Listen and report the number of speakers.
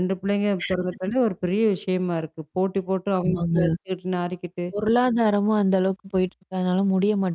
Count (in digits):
2